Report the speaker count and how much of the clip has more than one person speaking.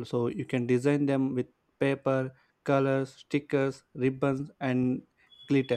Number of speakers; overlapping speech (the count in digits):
1, no overlap